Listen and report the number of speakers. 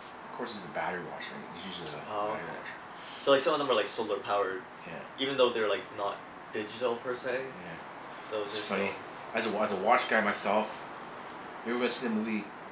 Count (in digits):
2